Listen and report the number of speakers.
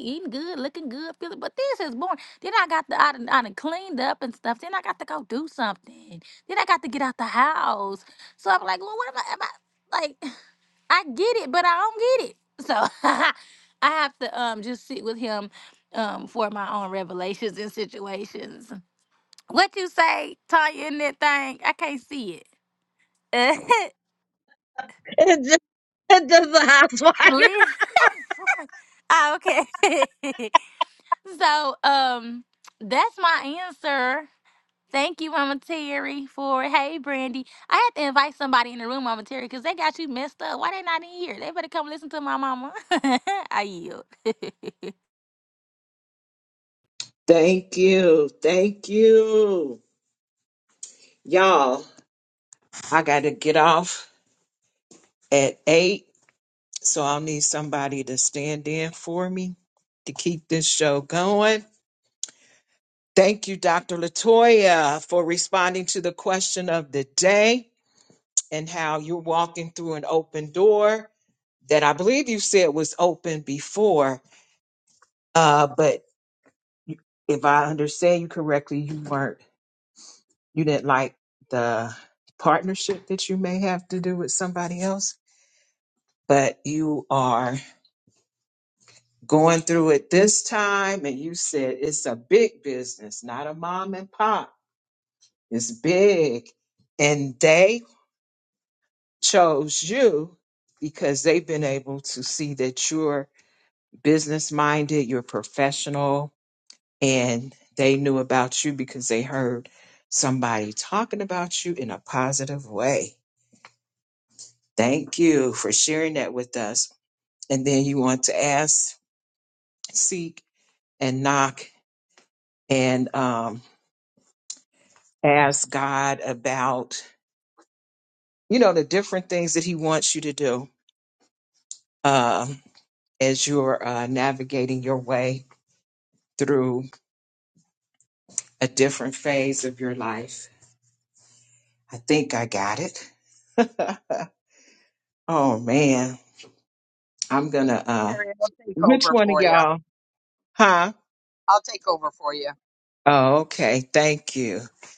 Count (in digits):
4